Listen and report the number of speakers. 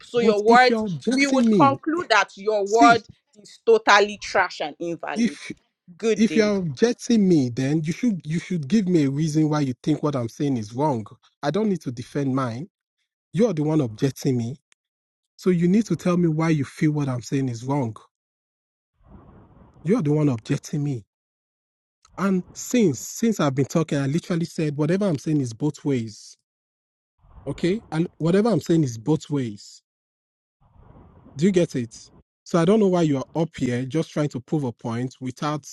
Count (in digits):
2